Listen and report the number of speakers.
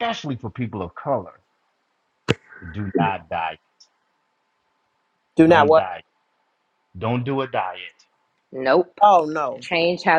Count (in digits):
3